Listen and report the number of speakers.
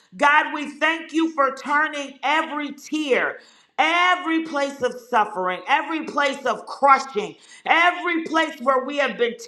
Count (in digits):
1